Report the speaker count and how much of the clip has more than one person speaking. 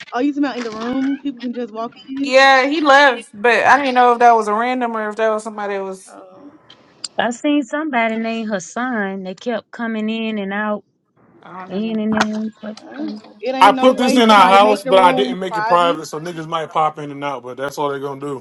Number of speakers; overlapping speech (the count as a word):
four, about 17%